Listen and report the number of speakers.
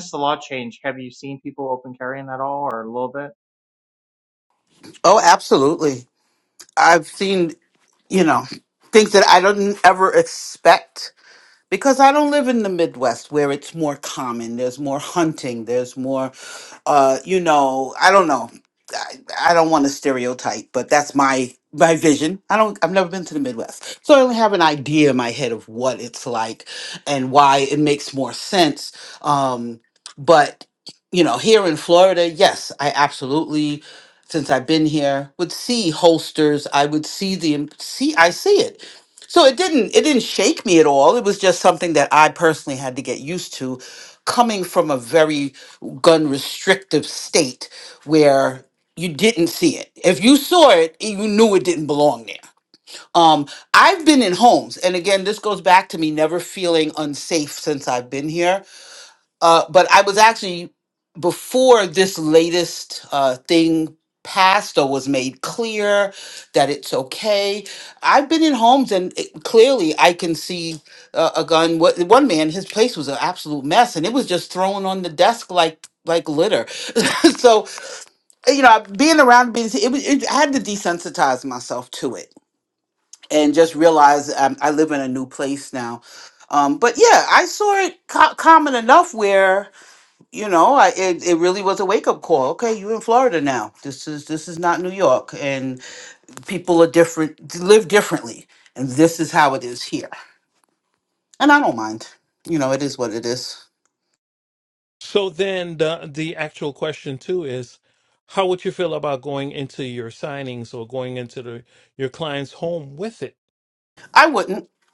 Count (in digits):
3